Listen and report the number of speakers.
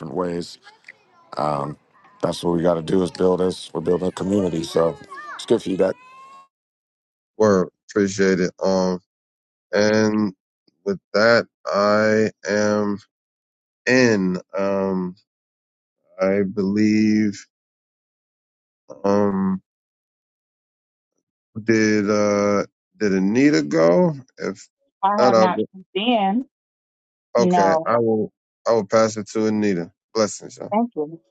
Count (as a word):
three